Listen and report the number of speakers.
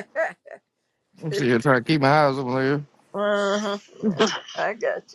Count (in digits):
2